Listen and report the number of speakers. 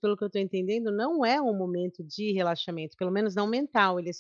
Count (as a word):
one